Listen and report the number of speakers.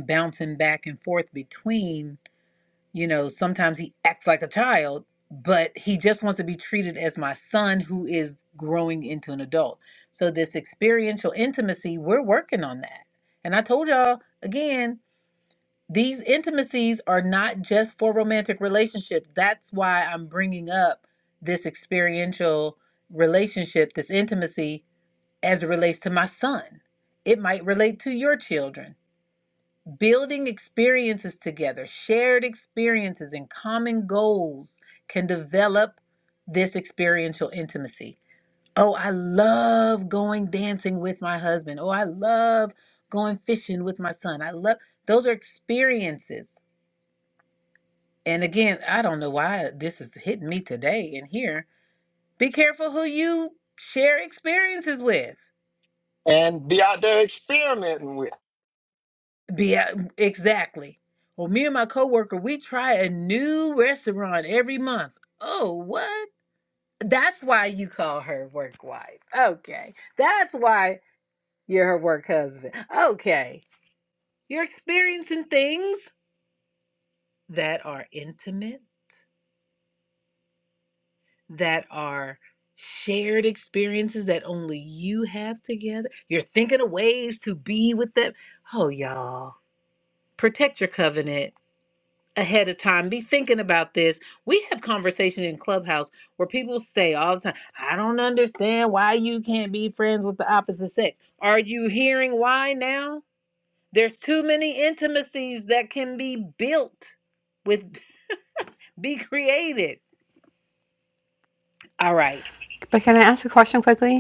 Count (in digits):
3